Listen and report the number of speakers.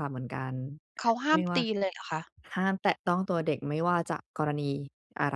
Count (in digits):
2